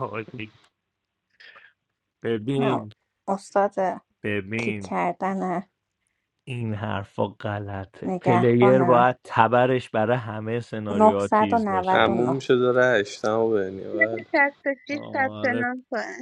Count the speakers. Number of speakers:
four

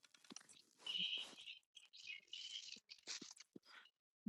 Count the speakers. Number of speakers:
zero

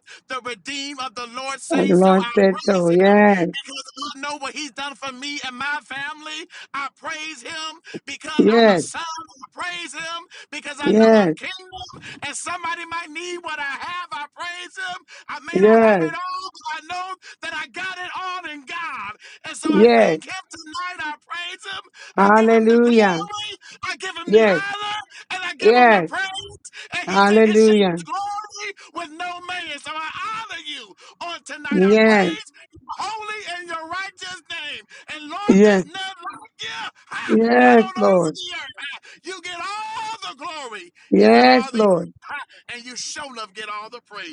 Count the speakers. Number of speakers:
two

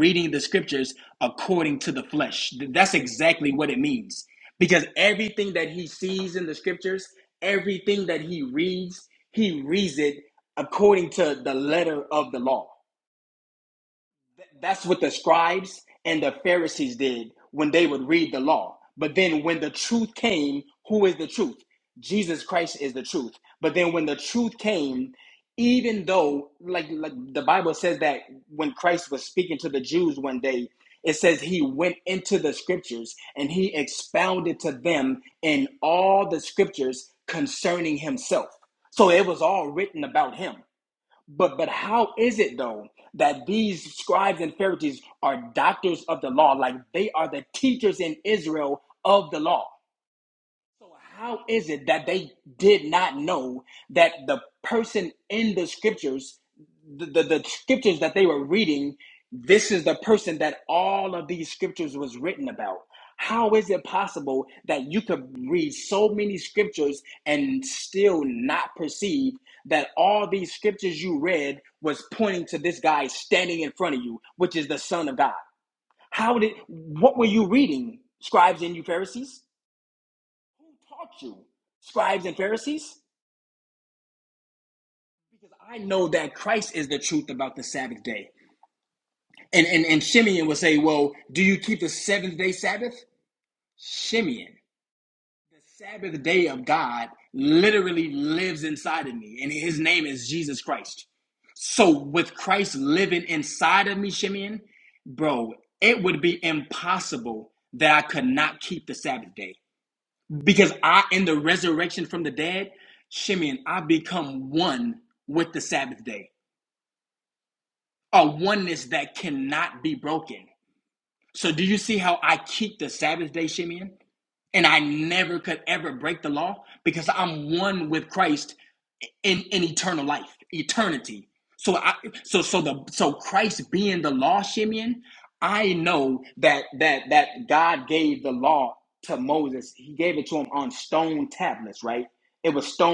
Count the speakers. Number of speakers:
one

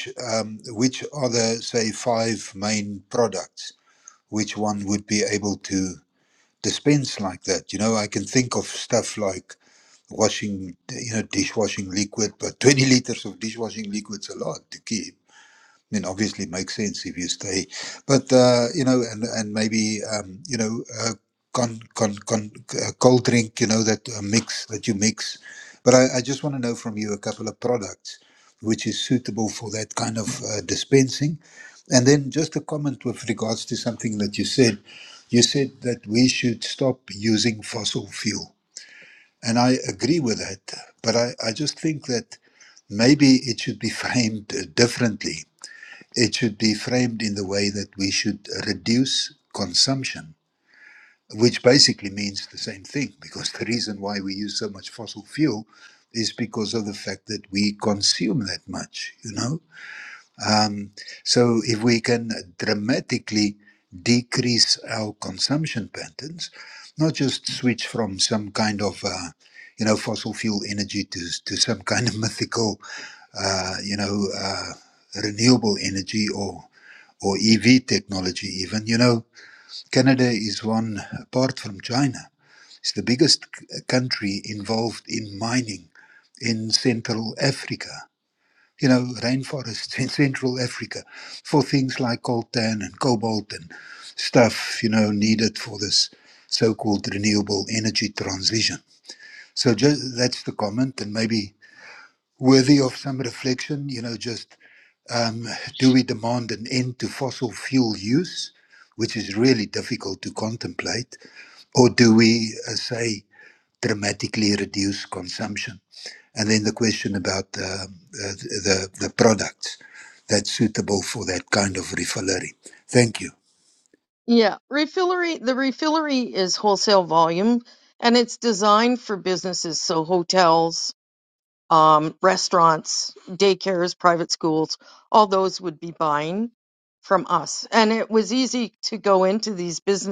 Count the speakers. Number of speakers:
two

